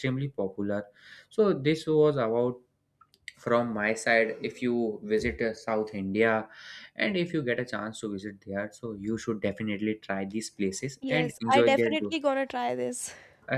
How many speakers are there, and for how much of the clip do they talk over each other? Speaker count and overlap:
2, about 8%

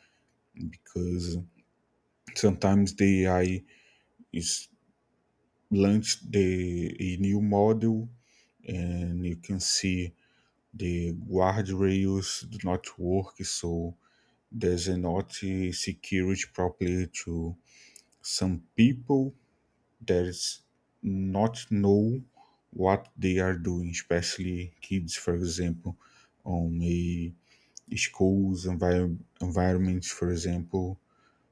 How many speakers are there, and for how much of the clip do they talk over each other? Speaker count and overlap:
1, no overlap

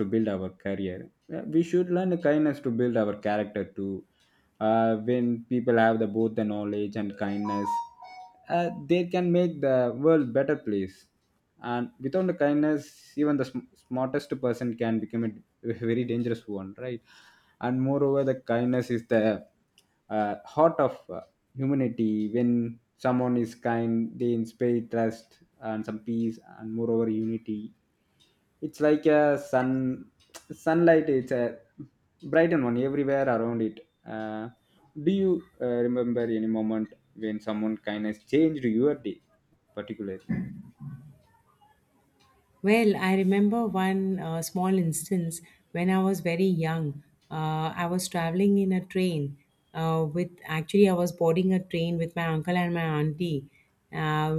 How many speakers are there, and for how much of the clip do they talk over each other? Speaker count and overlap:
2, no overlap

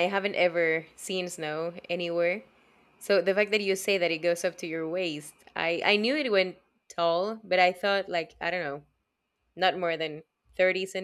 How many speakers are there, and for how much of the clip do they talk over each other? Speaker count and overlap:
1, no overlap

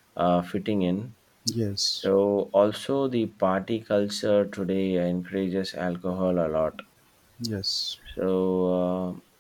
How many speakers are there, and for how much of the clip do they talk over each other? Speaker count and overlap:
2, about 1%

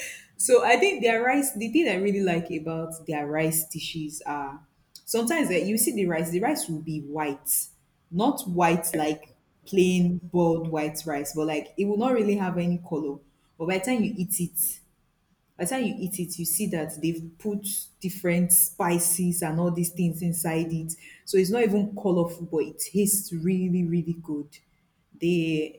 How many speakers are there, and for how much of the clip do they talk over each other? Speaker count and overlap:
1, no overlap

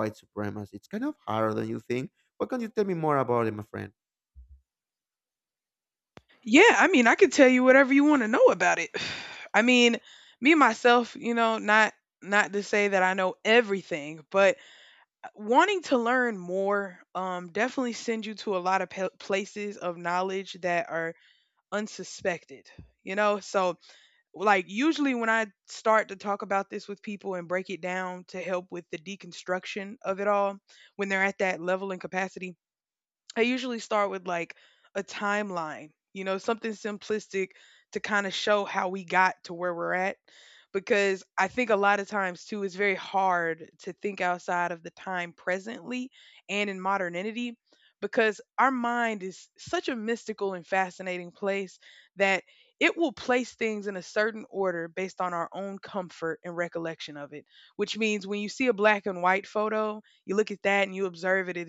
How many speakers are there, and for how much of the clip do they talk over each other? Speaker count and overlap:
2, no overlap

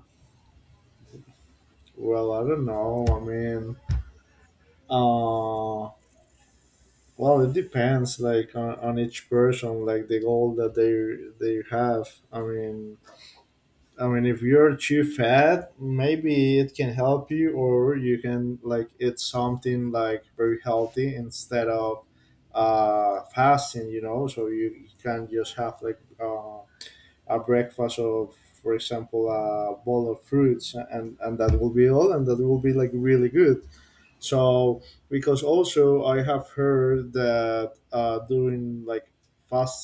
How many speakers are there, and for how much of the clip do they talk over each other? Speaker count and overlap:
1, no overlap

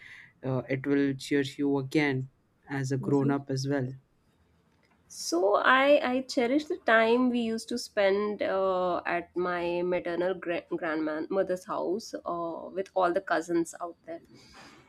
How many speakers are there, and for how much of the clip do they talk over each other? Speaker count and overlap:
2, about 2%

